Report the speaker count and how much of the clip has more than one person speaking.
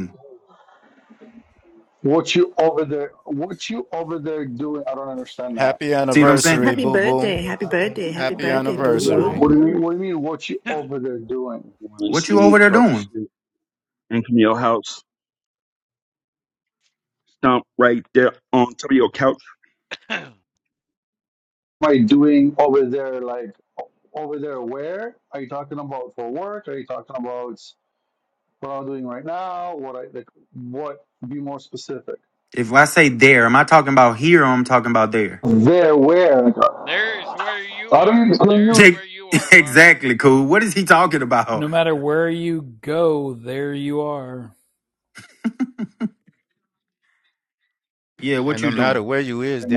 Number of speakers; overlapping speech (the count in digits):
7, about 12%